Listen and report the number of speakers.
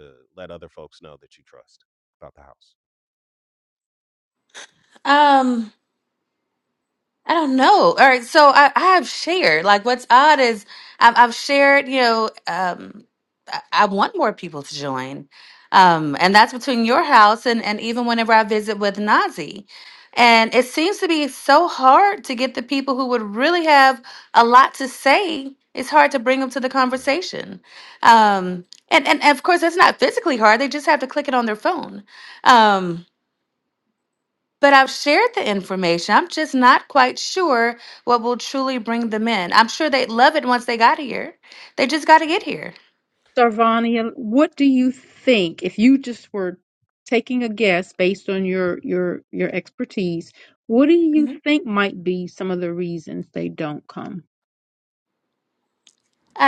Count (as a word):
three